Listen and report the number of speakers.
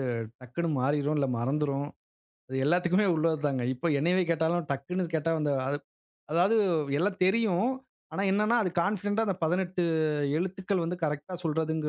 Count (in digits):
1